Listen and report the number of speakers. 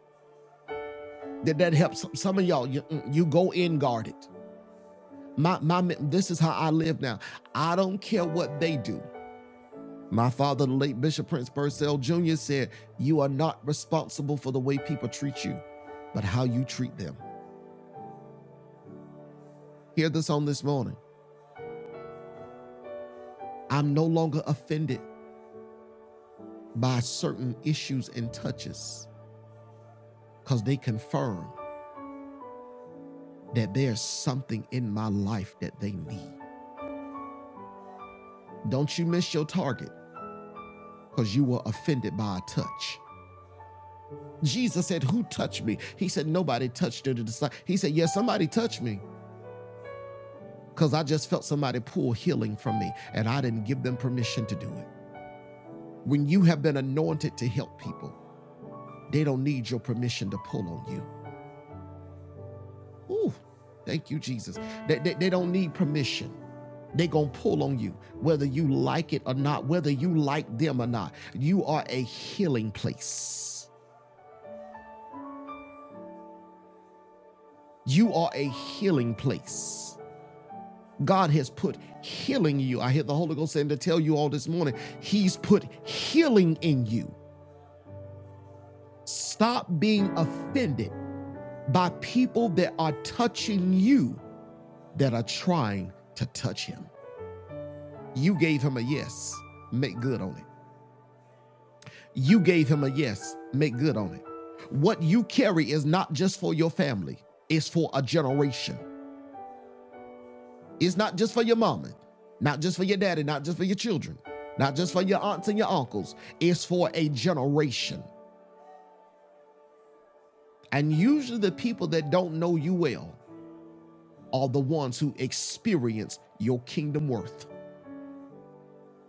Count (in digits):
1